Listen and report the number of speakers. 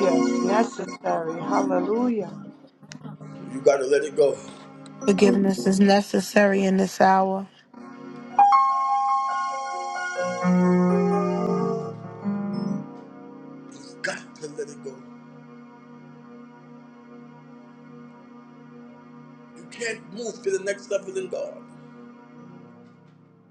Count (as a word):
three